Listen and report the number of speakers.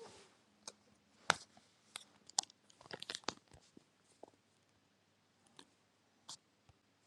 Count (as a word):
zero